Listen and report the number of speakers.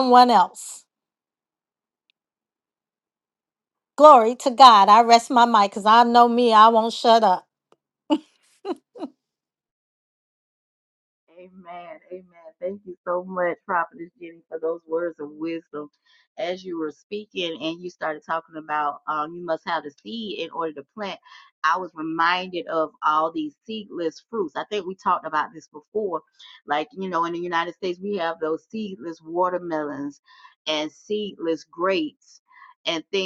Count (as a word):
two